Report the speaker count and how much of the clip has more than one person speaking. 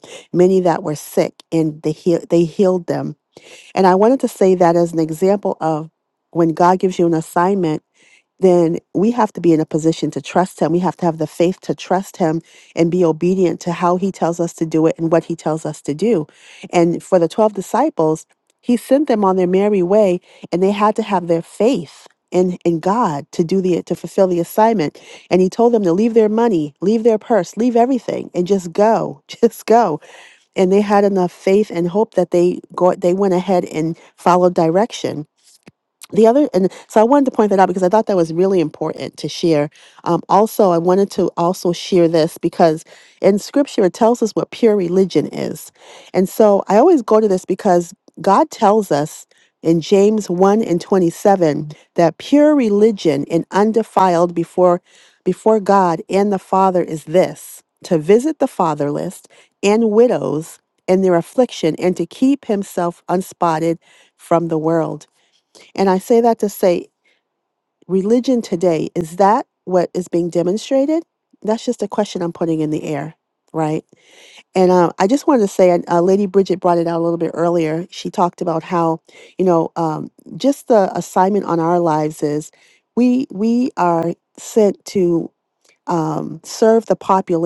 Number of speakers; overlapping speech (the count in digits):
1, no overlap